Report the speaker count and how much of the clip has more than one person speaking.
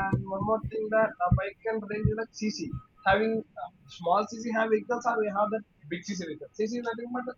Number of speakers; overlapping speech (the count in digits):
1, no overlap